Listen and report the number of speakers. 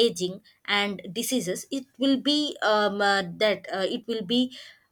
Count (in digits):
1